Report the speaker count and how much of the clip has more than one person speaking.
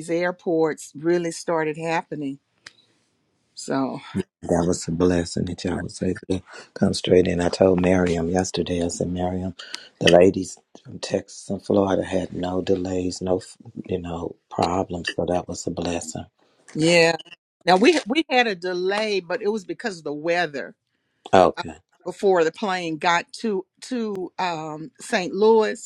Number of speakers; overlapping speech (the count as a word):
two, under 1%